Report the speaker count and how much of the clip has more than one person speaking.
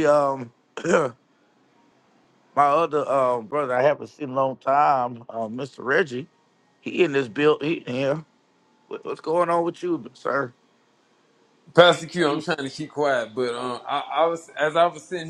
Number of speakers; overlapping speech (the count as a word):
two, about 2%